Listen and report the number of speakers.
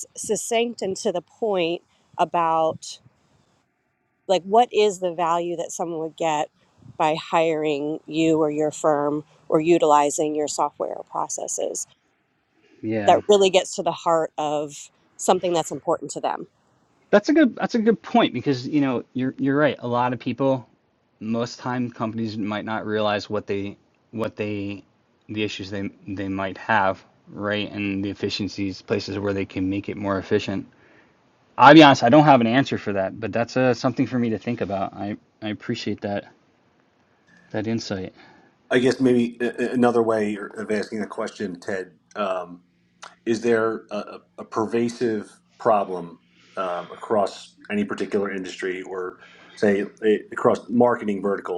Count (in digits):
3